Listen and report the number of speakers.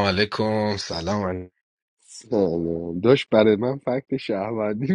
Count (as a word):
two